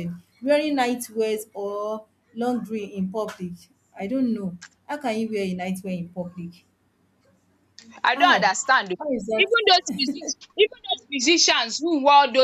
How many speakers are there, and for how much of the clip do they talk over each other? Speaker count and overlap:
two, about 4%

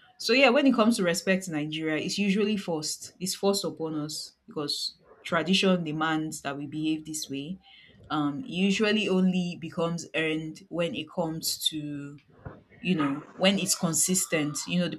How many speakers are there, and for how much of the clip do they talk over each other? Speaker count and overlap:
one, no overlap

